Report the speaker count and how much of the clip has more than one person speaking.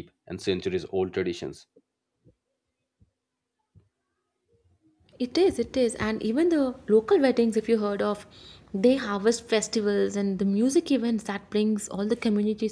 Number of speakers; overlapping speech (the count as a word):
two, no overlap